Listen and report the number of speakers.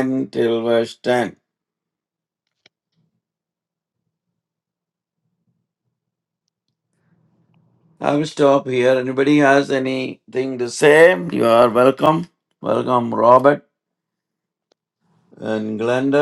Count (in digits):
1